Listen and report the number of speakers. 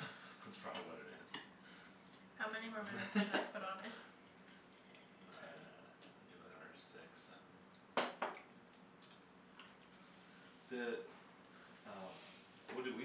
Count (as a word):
three